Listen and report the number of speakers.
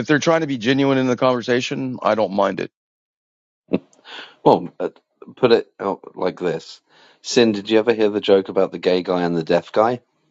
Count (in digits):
2